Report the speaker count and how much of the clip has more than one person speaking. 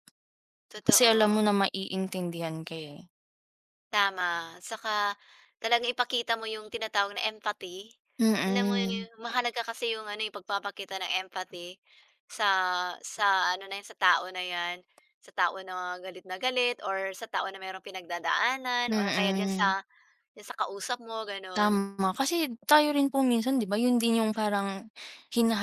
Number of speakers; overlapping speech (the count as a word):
two, about 9%